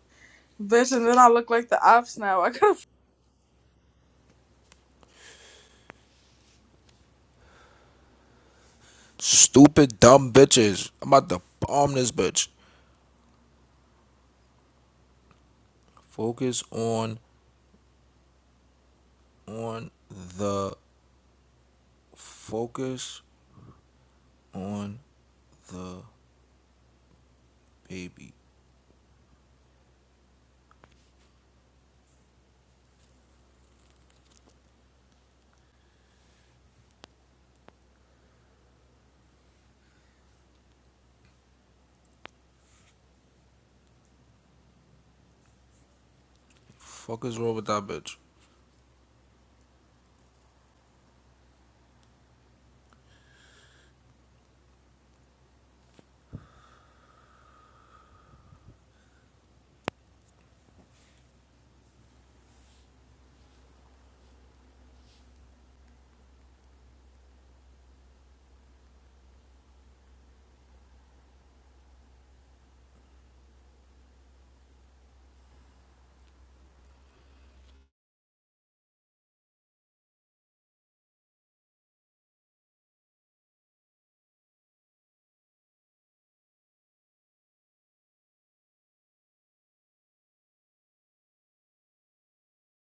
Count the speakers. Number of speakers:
2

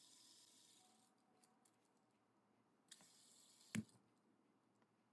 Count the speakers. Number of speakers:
0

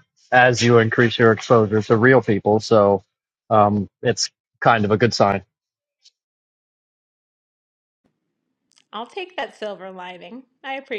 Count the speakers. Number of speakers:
2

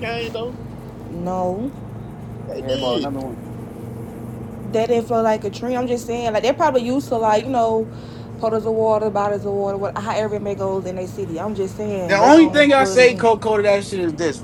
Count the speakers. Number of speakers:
3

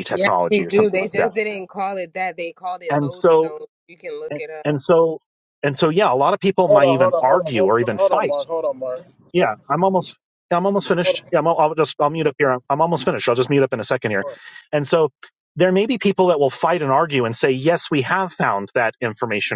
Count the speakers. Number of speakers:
3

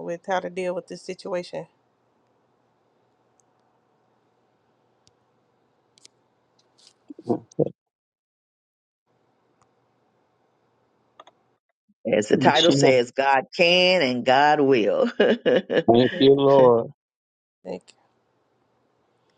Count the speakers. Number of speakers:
3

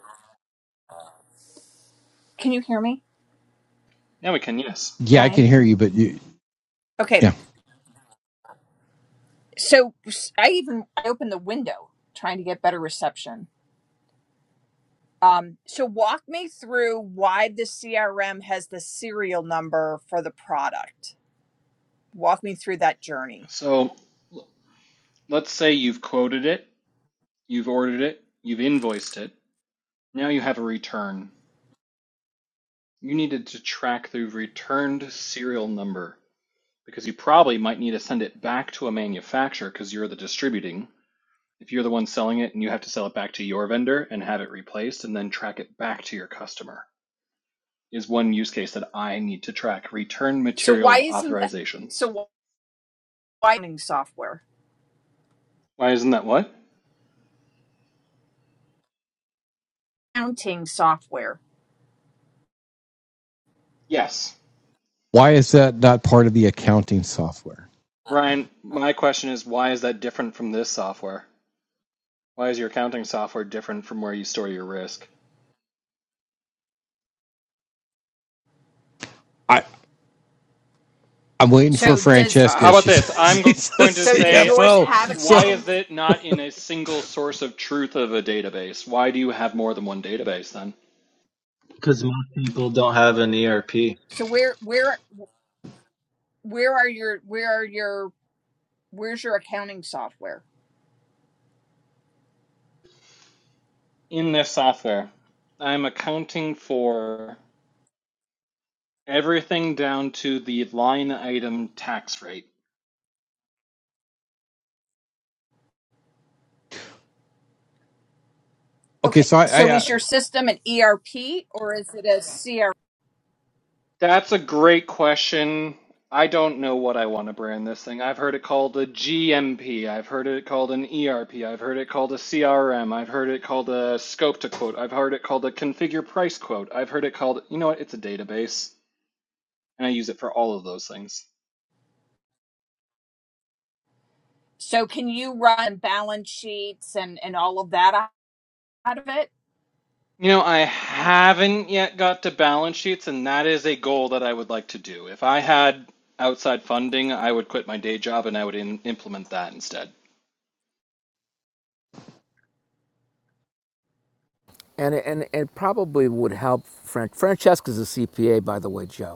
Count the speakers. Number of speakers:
5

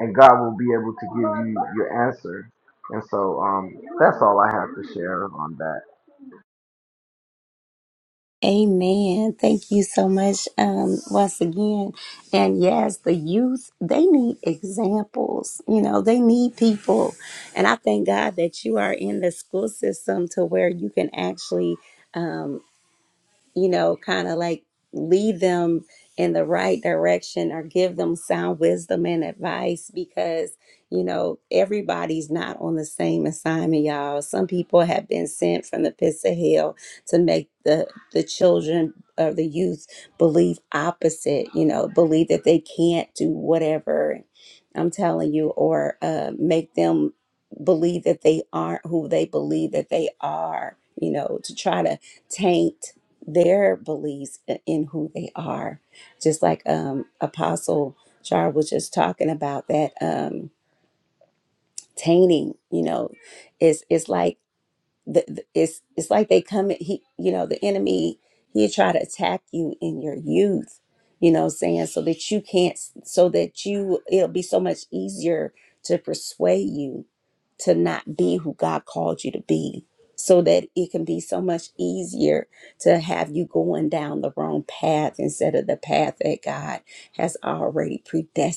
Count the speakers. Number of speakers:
2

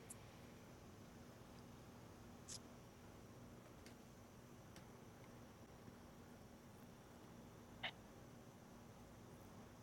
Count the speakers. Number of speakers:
0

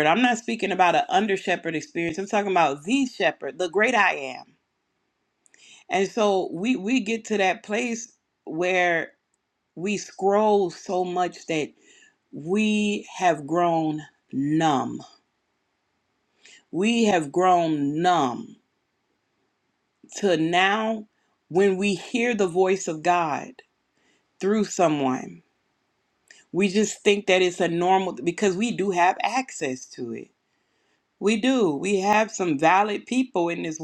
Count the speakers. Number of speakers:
1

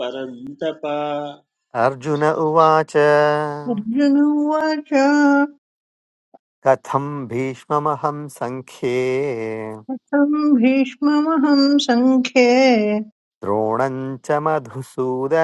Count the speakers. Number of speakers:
3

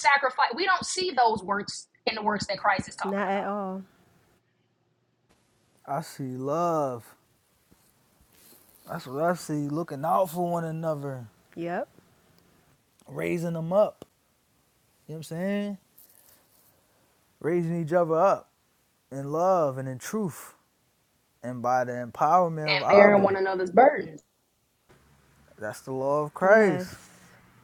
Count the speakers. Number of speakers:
3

